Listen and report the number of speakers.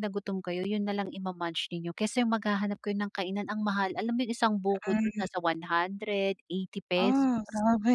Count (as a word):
two